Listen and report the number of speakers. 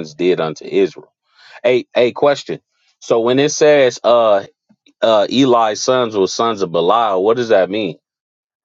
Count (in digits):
1